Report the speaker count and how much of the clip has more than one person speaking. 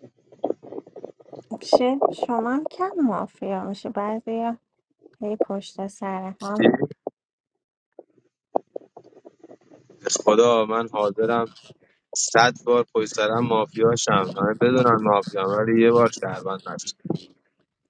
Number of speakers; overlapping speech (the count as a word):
two, no overlap